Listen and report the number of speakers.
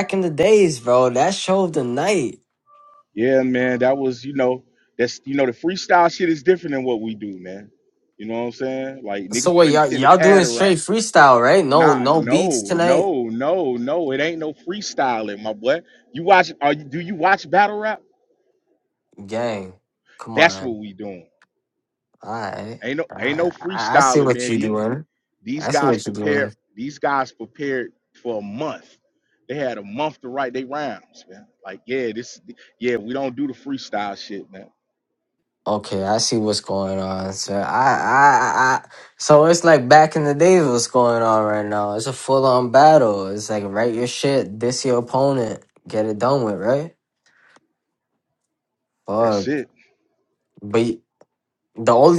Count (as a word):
two